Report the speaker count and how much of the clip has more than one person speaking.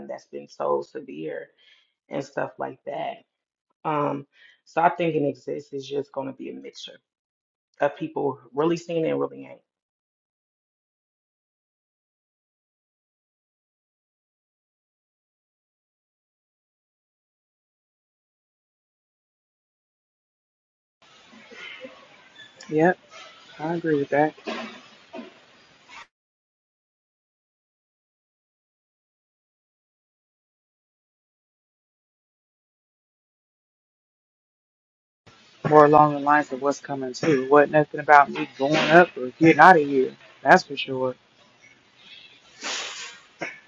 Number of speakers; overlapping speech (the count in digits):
2, no overlap